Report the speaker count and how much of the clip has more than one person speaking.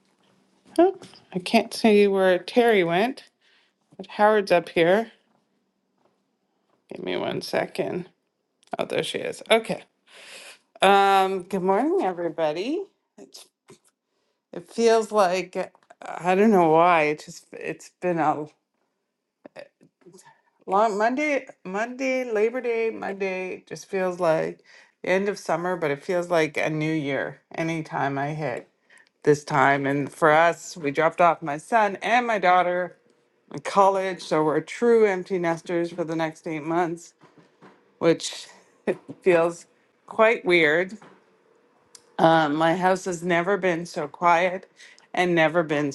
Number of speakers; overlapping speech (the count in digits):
1, no overlap